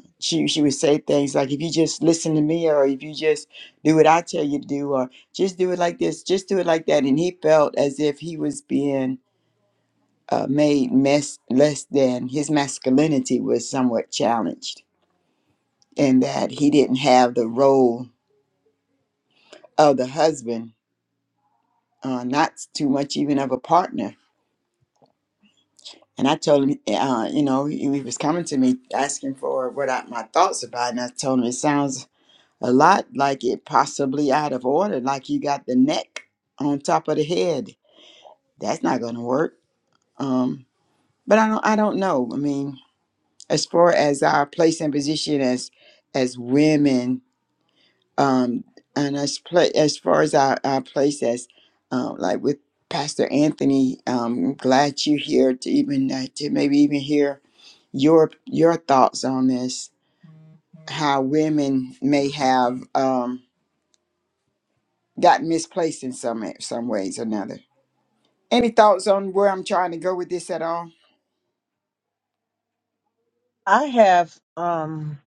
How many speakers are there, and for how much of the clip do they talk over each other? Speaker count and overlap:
2, no overlap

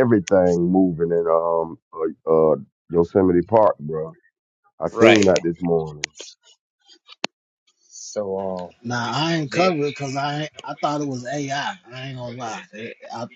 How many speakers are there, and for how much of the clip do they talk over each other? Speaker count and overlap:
3, about 4%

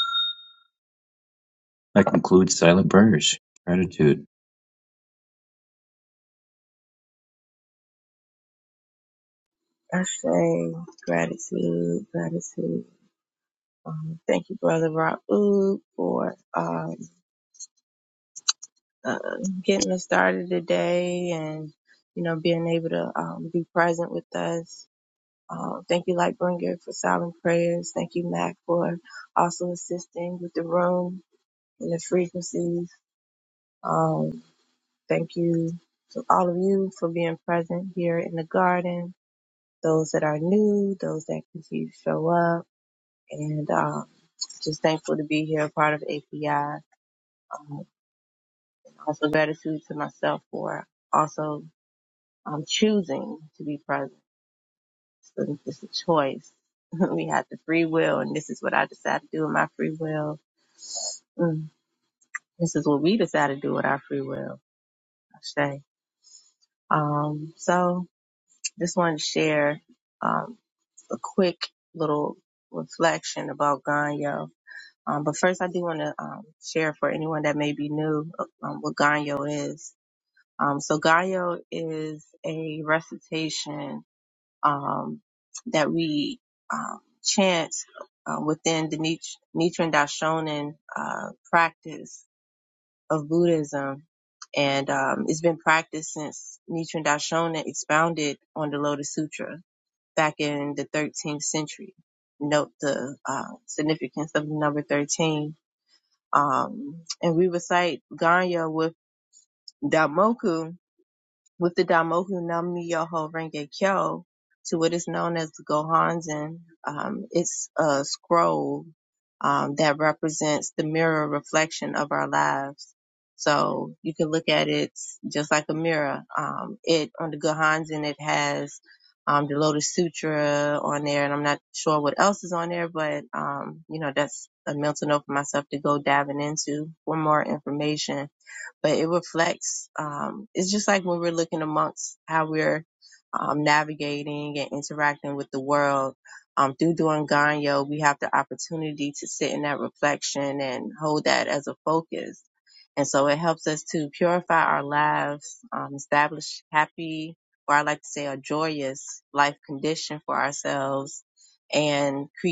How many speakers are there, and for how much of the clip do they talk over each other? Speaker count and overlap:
2, no overlap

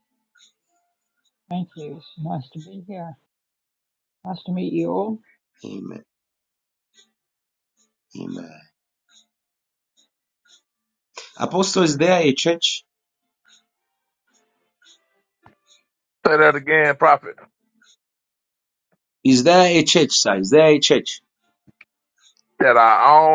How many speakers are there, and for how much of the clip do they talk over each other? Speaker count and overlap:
3, no overlap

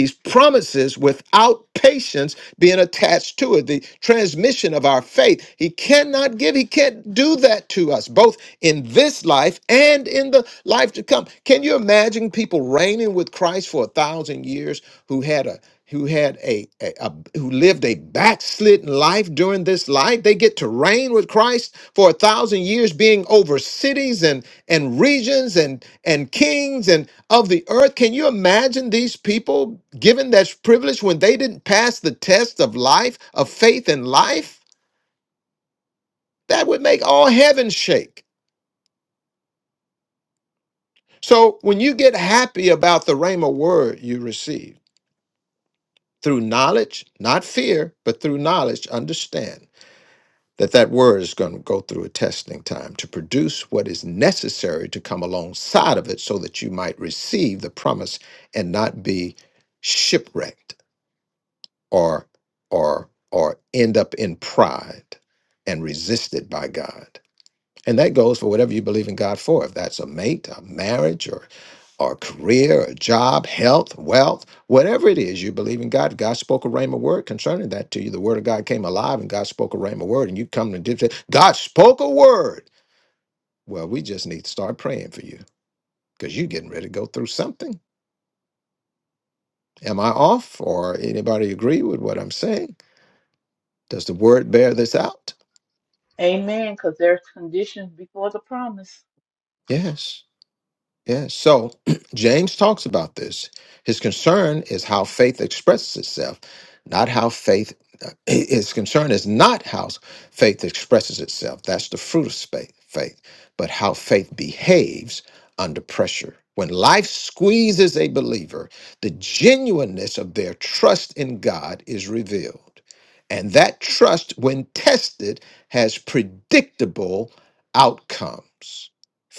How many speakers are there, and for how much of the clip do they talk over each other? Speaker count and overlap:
2, no overlap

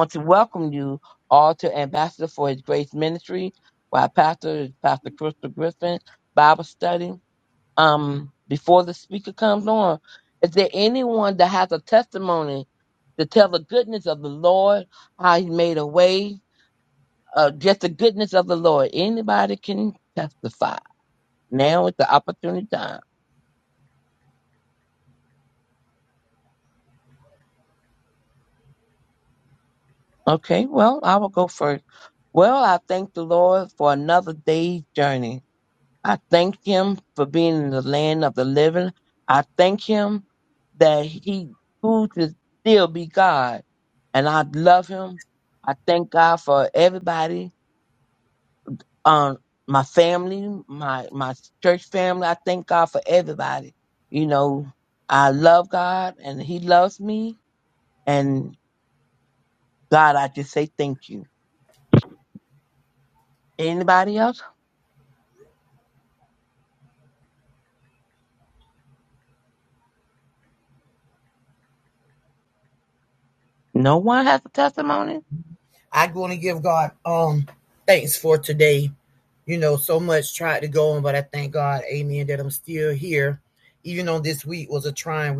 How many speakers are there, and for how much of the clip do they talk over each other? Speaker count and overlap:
2, no overlap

